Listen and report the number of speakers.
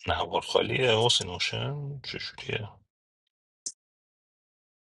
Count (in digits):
1